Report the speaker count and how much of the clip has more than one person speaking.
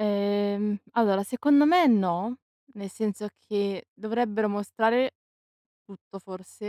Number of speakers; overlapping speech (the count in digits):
1, no overlap